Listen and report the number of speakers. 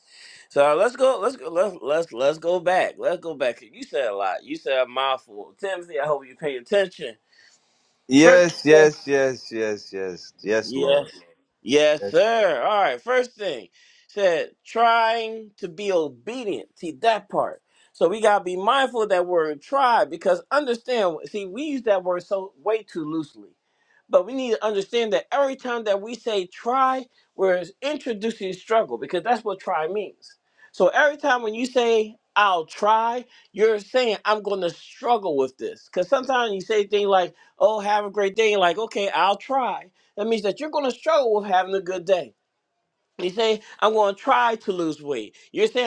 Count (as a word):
two